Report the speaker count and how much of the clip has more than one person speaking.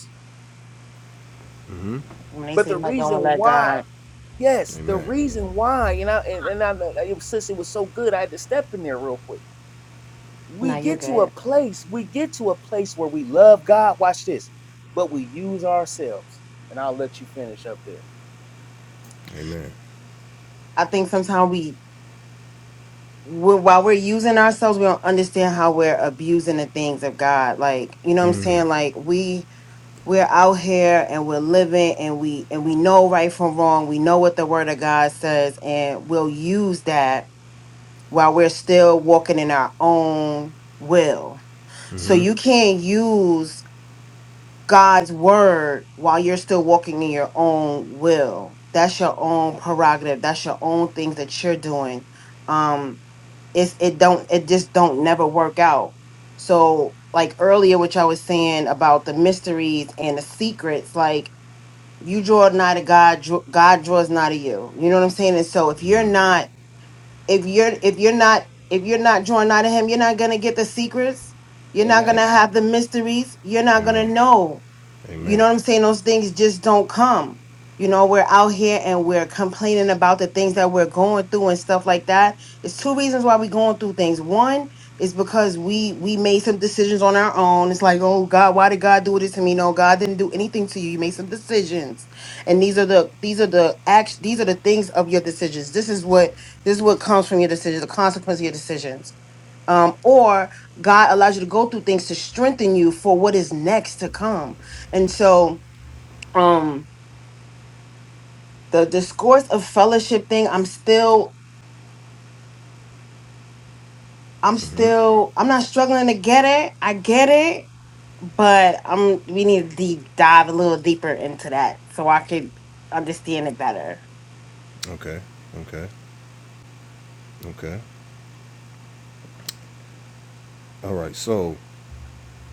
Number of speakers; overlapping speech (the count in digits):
3, about 3%